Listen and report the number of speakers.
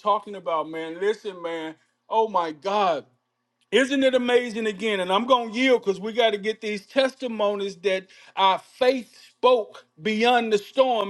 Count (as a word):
one